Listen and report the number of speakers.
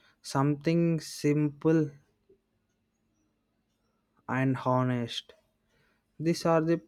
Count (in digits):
1